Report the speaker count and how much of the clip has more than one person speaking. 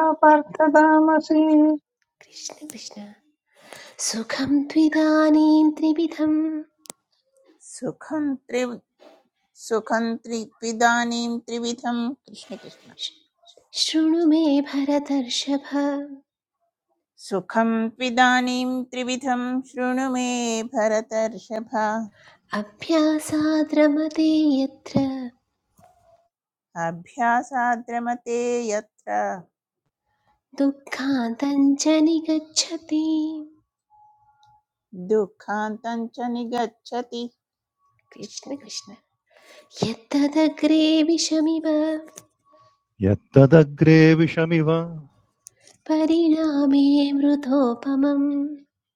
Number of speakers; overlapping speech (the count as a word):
four, about 1%